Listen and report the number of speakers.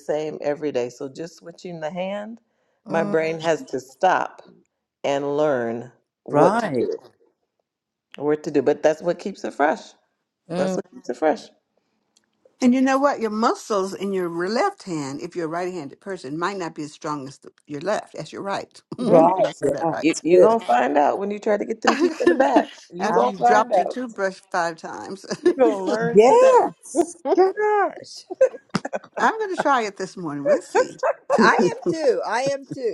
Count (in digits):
3